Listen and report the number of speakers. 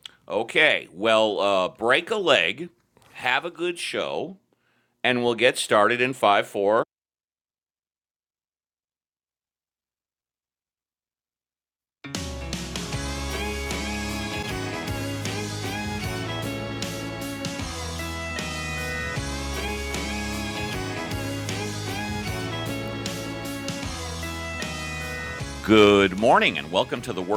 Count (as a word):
one